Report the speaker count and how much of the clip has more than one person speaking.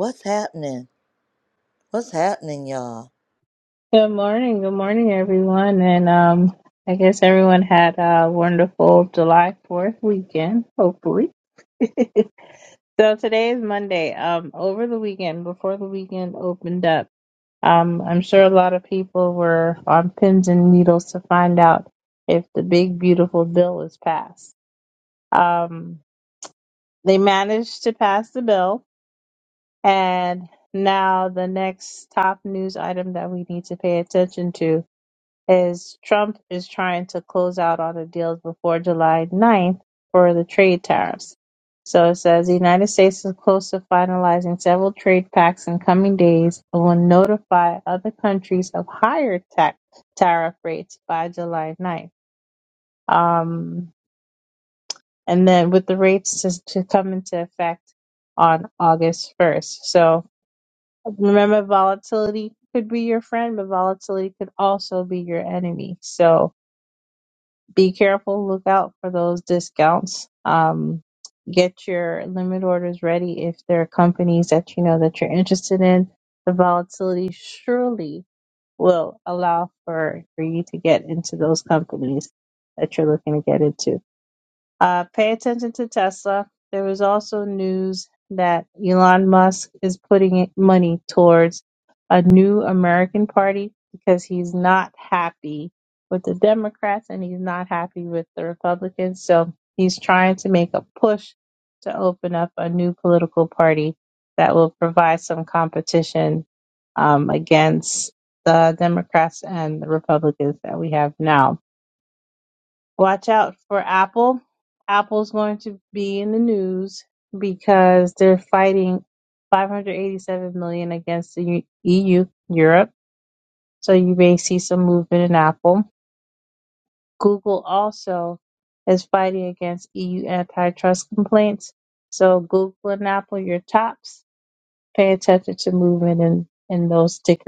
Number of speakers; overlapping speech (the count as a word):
two, no overlap